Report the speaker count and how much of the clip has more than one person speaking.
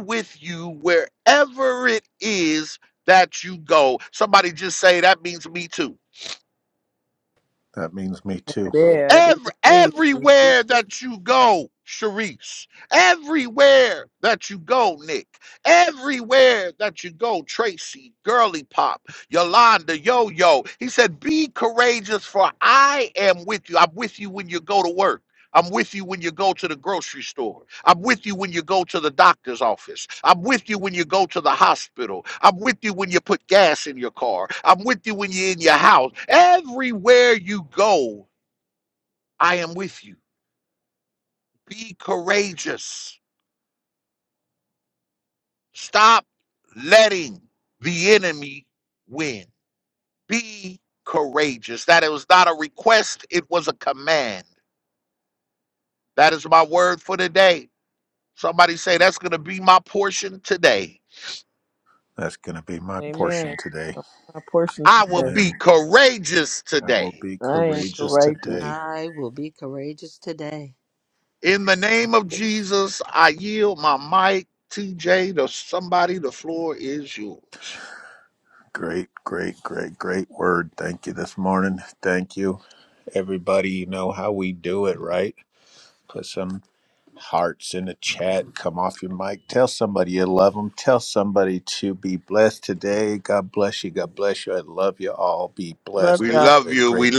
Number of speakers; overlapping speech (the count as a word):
four, about 5%